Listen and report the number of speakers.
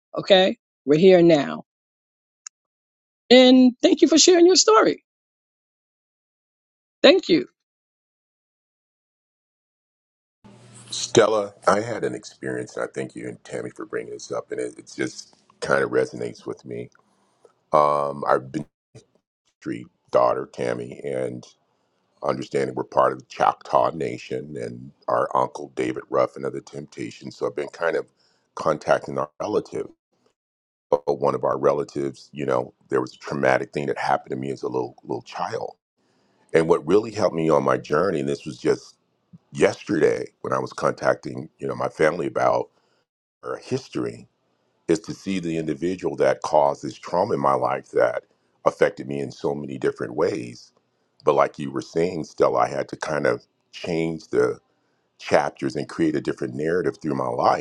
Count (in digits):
2